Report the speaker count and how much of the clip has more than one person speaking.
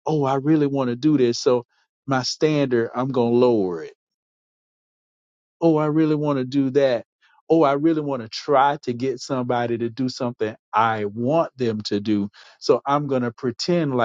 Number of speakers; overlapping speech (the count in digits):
1, no overlap